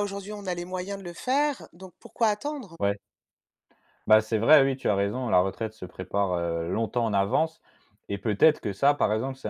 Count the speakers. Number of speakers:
2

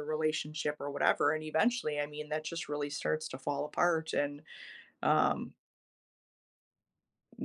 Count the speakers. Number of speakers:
1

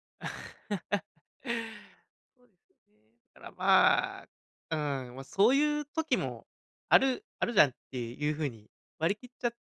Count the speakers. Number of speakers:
1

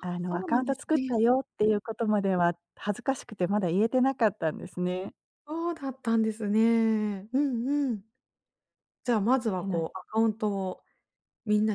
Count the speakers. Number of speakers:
2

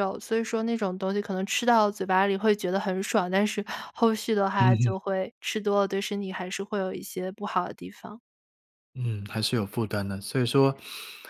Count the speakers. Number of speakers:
2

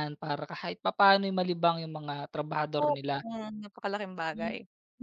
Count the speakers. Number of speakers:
2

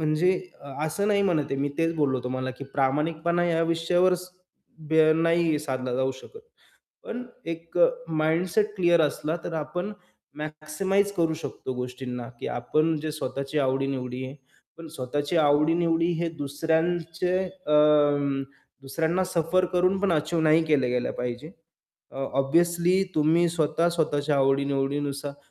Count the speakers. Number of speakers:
1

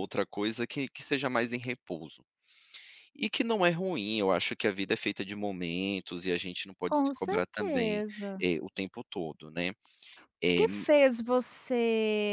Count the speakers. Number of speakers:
2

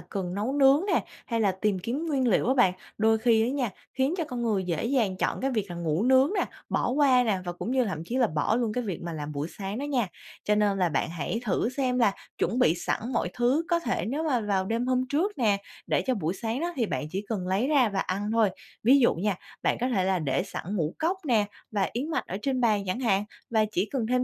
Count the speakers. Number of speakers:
1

